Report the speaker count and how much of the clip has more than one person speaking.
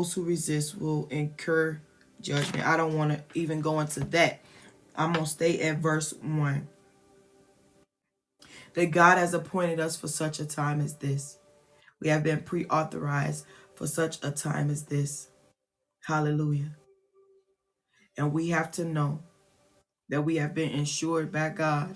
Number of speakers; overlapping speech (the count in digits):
1, no overlap